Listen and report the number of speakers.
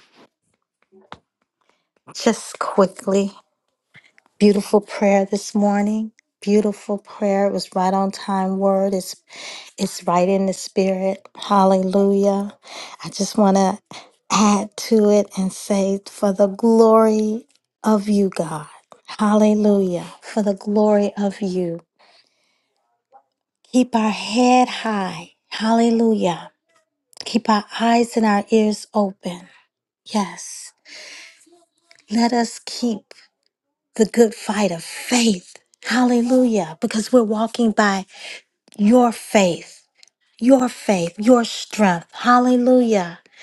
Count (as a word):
one